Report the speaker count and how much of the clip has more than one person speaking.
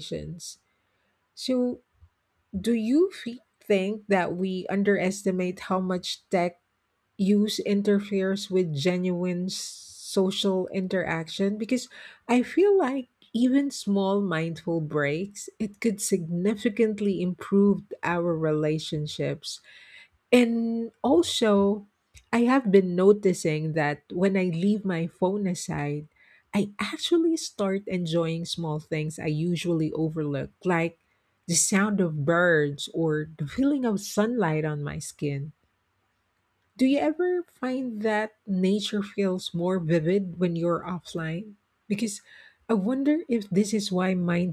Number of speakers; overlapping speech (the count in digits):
1, no overlap